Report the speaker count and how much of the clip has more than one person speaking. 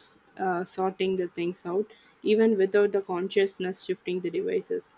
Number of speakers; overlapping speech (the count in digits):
1, no overlap